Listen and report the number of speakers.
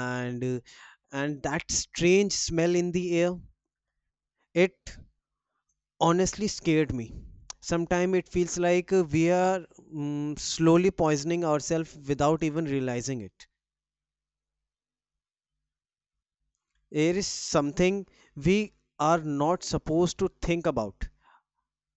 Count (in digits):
1